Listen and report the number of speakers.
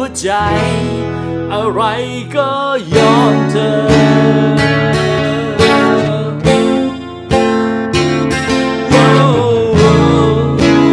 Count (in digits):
1